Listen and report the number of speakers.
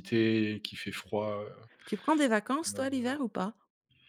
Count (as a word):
two